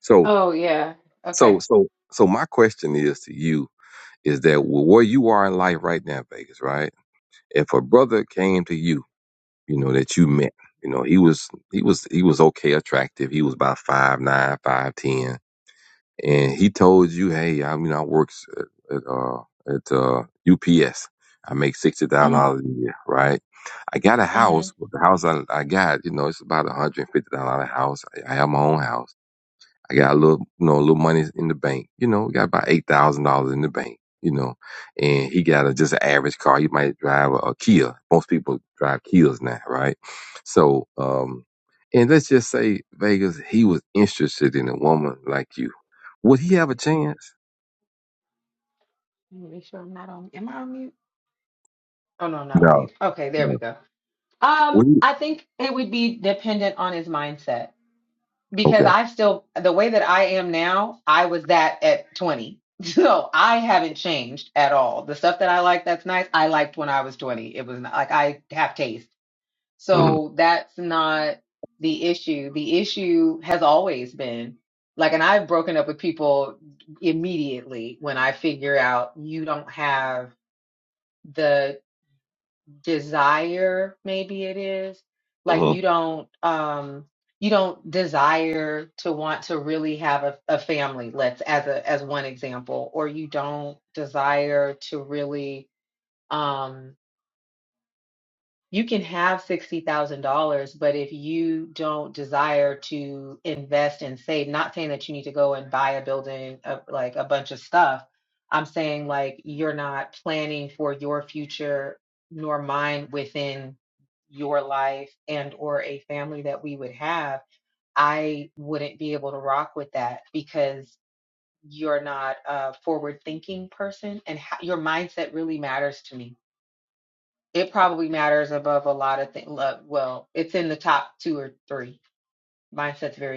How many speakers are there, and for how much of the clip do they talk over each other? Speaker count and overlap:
two, about 2%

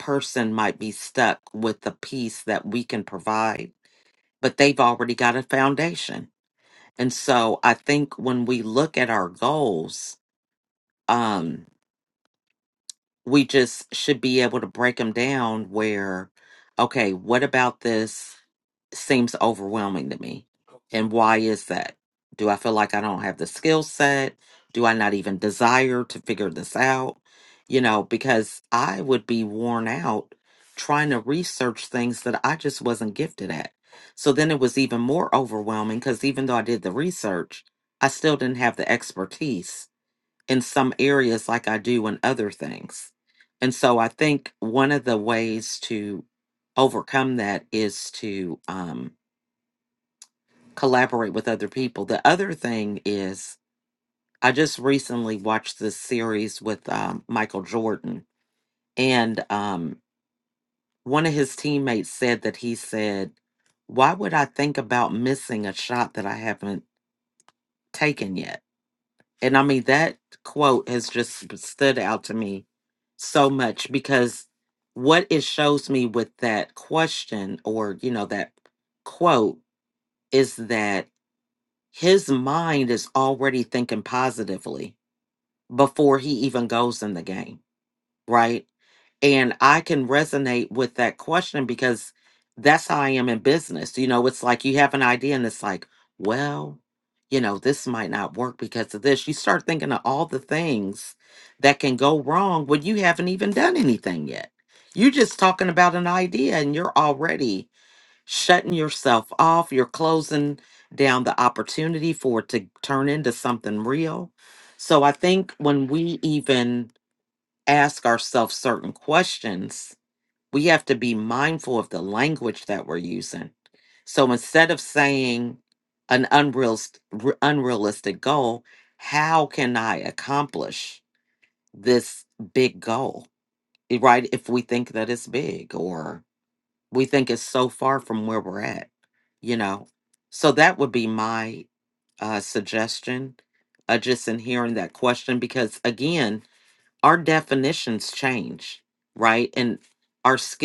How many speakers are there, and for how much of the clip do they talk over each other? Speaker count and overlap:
one, no overlap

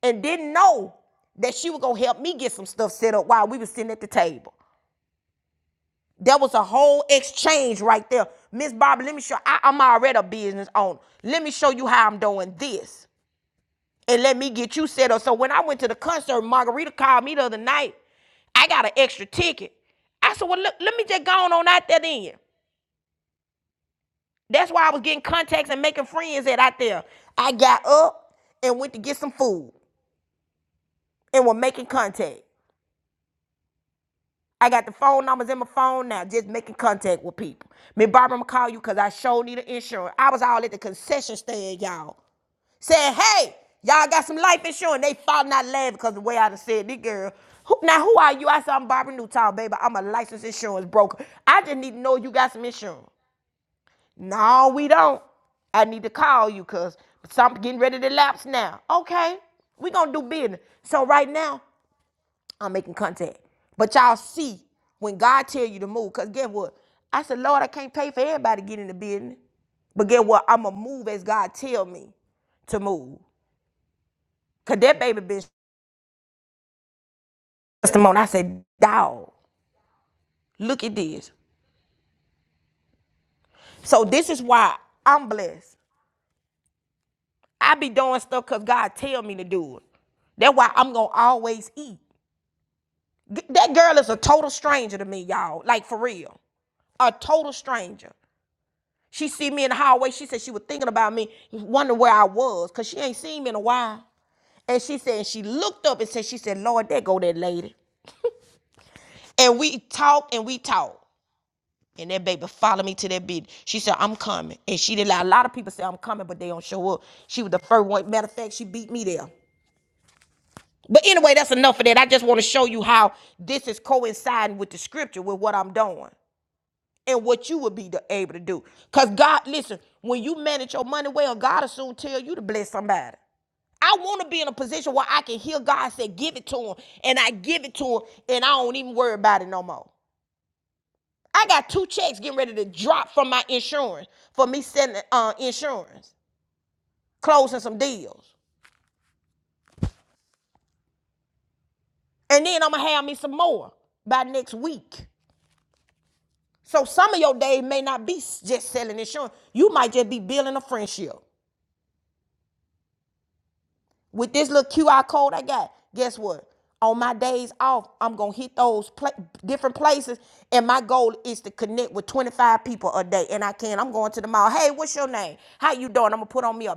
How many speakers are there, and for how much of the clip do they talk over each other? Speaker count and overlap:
one, no overlap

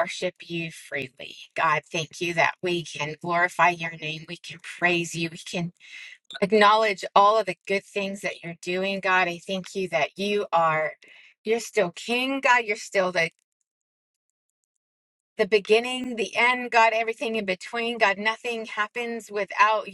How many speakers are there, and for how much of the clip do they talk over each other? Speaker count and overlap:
one, no overlap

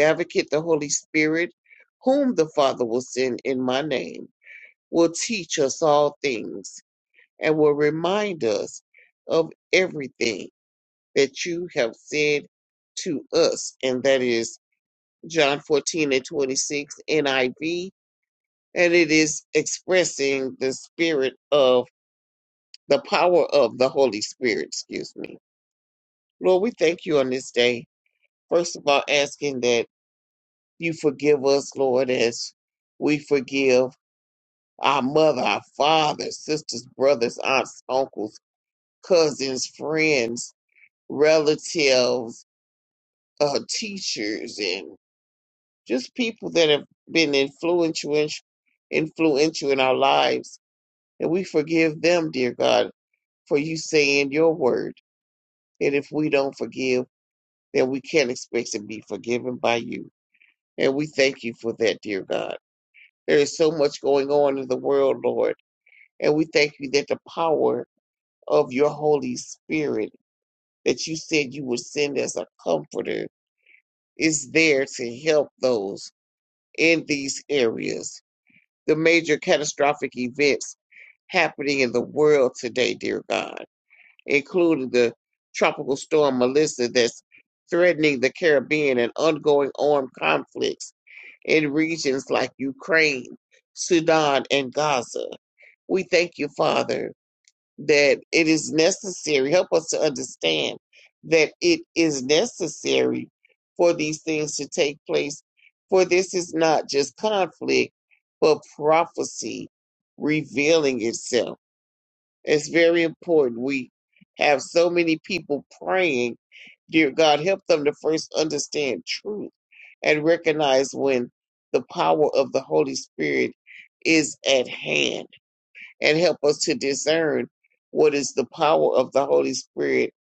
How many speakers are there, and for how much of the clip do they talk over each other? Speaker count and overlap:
one, no overlap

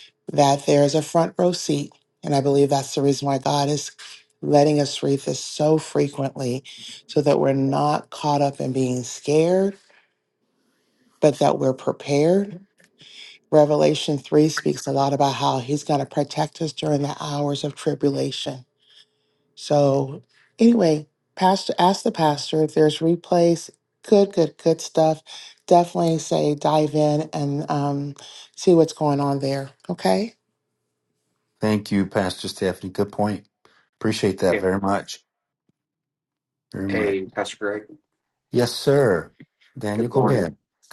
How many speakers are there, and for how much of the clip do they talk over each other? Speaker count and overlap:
three, about 2%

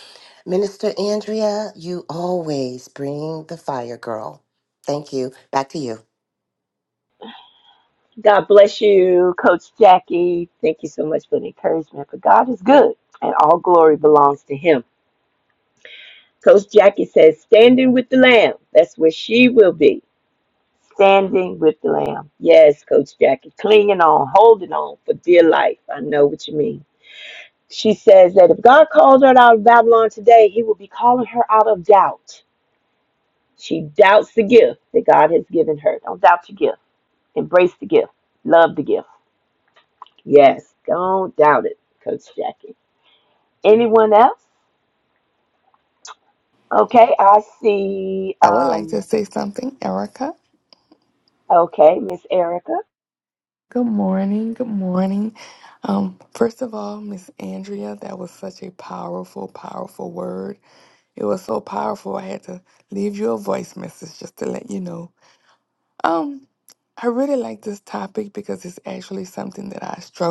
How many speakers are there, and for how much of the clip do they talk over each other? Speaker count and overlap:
three, about 1%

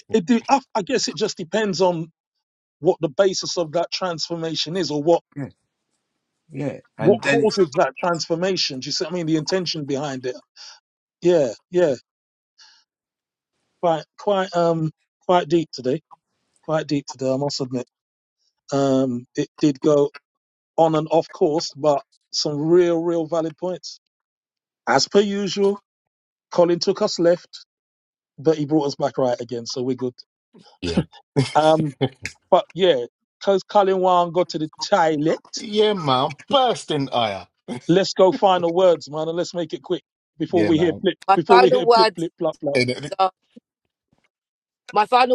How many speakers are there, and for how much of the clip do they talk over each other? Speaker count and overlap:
four, about 4%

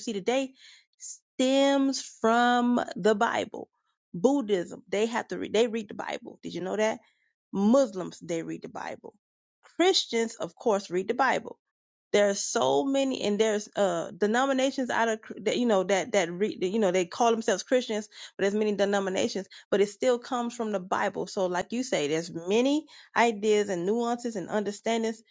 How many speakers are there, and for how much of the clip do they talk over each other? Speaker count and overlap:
one, no overlap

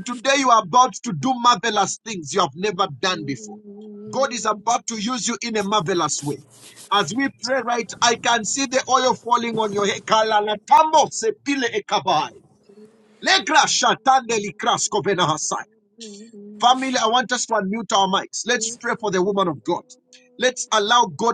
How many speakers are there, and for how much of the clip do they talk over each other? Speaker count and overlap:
one, no overlap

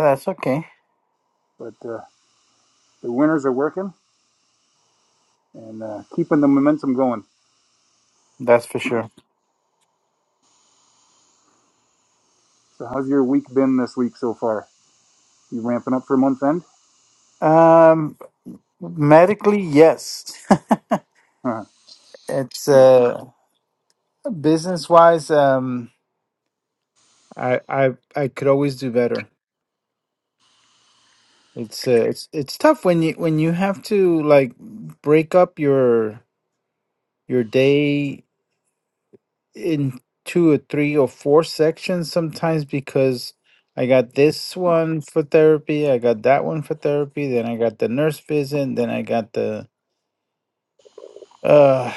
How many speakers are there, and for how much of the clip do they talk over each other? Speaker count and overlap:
two, no overlap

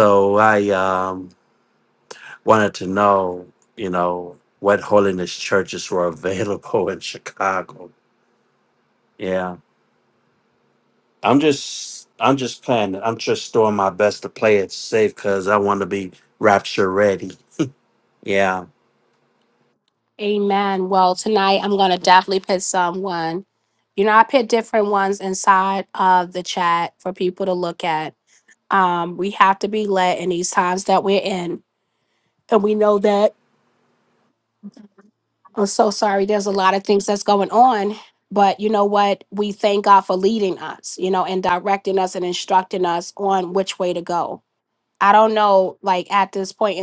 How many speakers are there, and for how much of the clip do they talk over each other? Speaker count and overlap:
two, no overlap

